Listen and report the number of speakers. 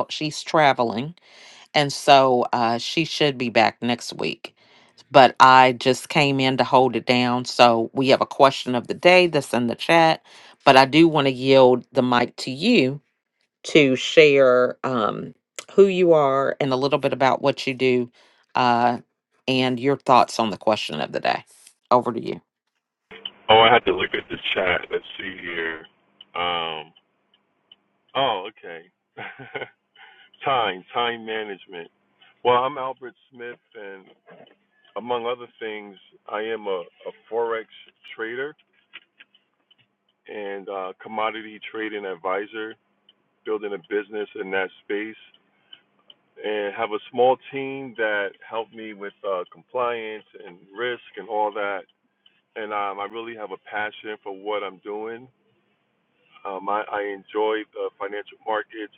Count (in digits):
2